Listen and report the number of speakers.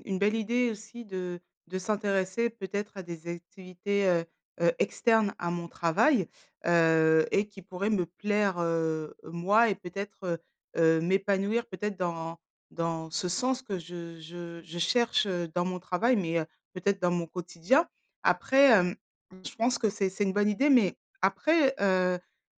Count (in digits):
1